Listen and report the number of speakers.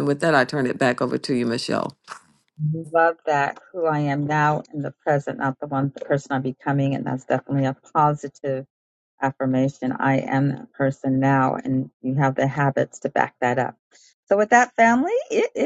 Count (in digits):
2